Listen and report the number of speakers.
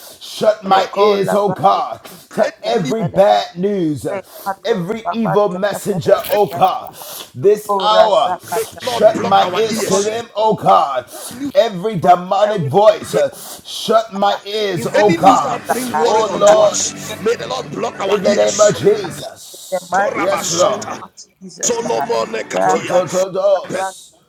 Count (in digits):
3